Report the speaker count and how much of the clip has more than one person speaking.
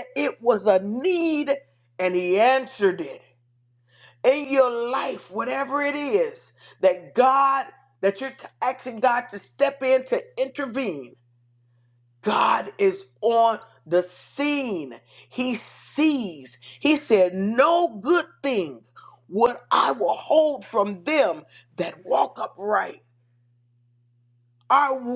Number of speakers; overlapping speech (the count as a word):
one, no overlap